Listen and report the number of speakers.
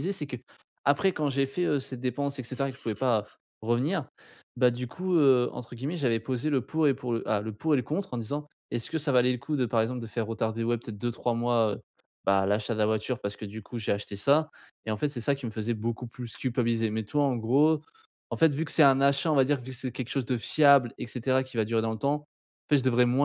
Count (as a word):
one